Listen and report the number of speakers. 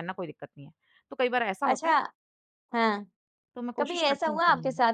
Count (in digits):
2